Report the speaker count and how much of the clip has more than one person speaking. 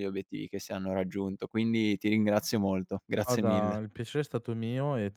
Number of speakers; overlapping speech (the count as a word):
two, about 10%